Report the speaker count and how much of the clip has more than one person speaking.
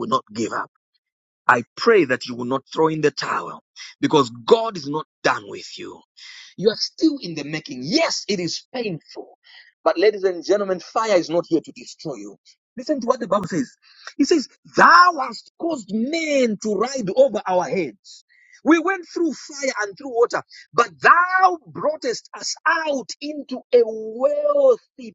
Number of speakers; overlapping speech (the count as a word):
one, no overlap